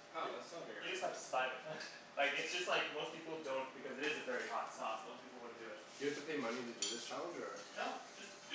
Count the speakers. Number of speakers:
3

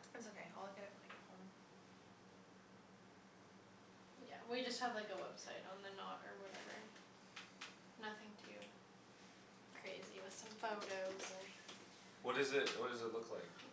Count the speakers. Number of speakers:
3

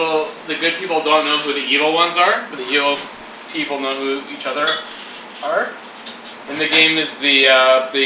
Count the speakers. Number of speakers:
1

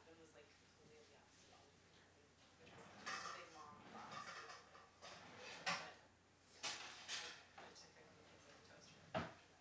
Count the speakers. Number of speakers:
1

